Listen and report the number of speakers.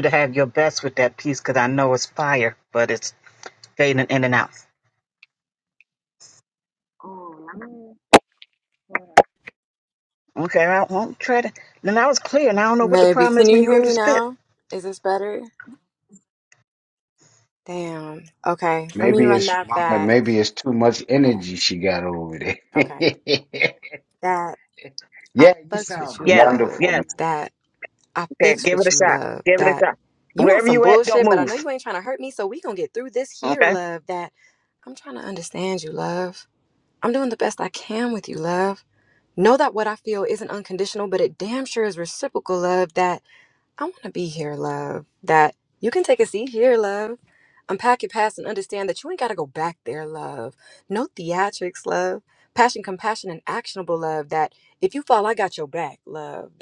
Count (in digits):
3